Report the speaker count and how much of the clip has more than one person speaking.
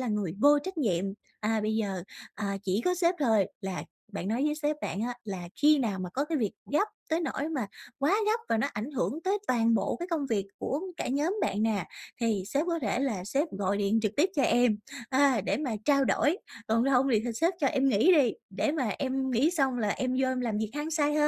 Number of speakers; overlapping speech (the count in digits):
1, no overlap